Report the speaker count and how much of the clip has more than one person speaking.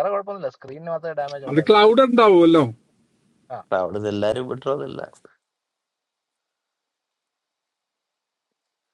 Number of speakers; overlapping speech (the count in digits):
3, about 2%